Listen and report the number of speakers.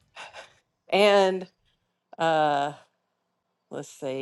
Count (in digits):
1